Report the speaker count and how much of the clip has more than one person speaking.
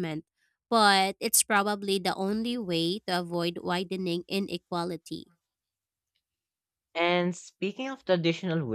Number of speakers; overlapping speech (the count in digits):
2, no overlap